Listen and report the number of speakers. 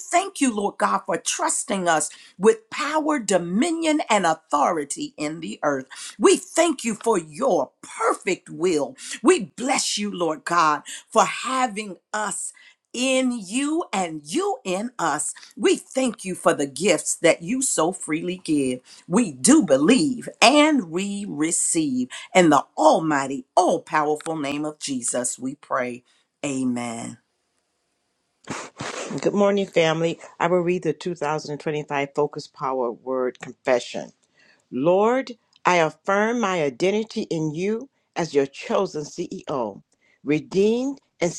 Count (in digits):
2